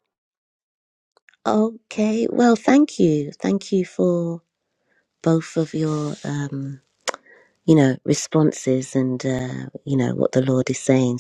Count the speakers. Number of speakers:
1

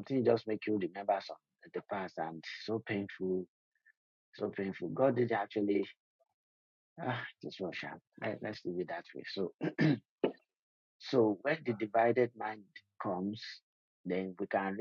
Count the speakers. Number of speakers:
1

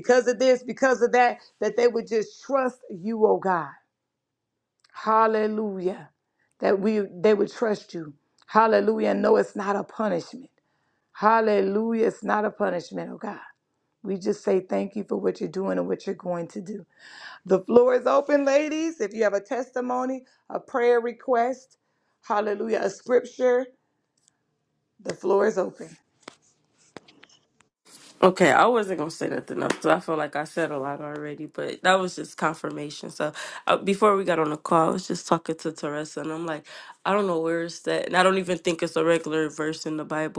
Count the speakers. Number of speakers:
2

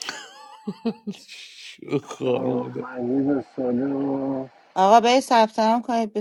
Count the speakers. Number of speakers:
3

